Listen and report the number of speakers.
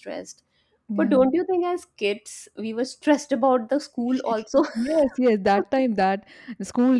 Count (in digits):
2